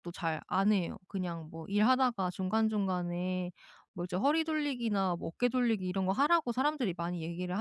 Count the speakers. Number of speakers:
one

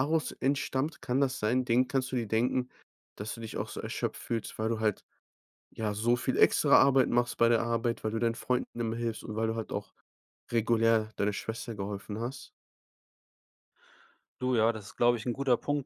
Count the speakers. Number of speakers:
two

